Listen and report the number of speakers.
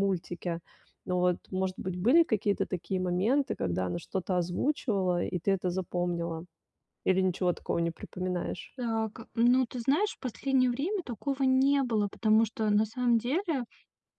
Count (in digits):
2